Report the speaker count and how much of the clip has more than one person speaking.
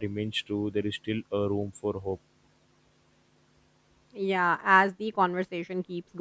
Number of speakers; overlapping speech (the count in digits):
2, no overlap